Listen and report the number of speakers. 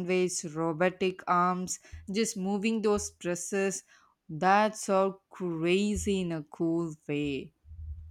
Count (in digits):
1